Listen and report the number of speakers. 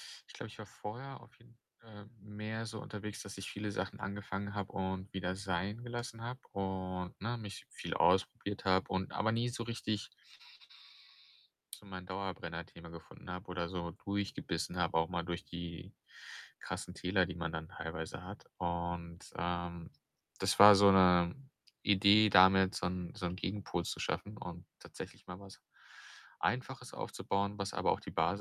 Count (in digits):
1